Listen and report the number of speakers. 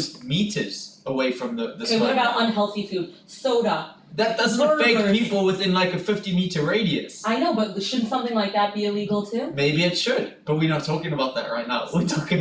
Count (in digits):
2